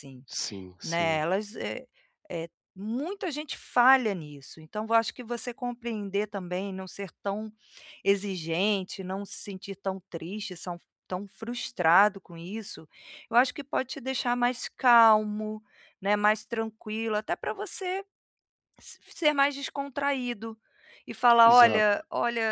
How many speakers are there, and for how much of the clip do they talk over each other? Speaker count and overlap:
2, about 3%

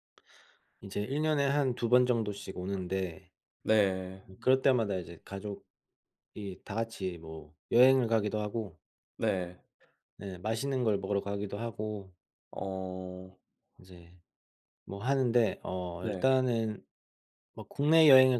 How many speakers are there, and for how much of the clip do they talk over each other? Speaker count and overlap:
2, about 1%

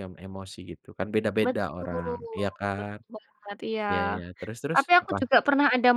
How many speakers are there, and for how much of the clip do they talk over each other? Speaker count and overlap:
2, about 26%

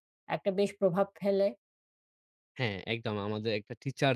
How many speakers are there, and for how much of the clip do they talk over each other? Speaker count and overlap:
2, no overlap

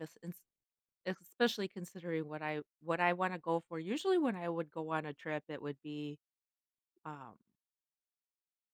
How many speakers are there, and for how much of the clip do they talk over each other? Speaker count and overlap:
1, no overlap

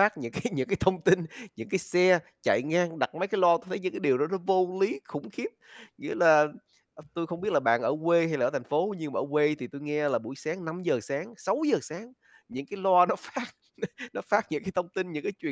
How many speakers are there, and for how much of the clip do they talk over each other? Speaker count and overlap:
1, no overlap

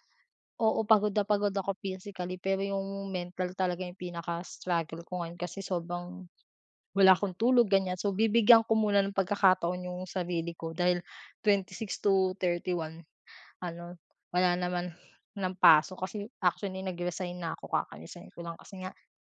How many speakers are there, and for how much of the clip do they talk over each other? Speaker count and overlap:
1, no overlap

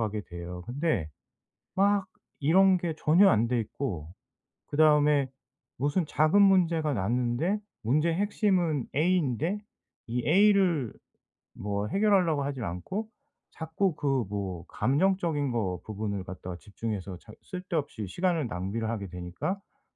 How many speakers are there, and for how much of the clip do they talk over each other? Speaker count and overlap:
1, no overlap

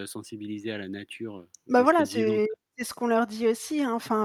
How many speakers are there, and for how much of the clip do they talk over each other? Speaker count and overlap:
2, about 17%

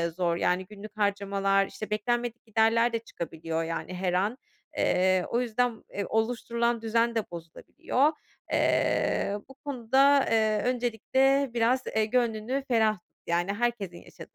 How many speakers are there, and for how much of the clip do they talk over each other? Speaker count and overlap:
1, no overlap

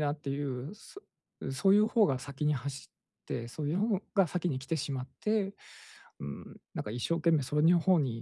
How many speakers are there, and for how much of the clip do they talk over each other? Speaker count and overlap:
1, no overlap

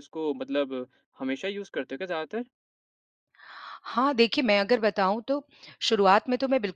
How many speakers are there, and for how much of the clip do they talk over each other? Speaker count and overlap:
2, no overlap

